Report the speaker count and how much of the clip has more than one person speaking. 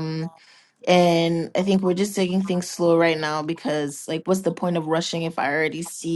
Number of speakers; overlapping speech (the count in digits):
1, no overlap